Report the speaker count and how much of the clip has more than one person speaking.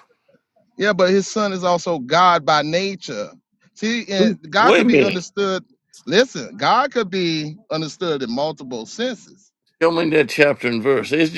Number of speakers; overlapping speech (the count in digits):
2, about 9%